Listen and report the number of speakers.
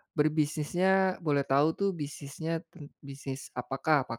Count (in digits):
1